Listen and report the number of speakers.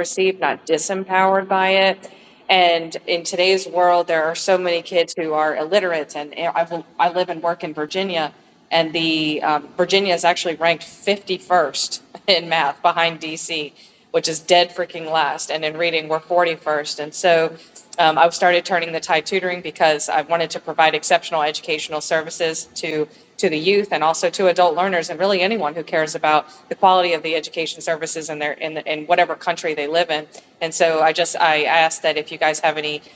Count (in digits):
1